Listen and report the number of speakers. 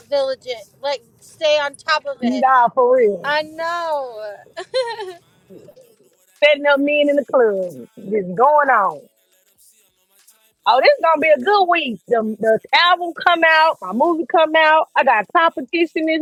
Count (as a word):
two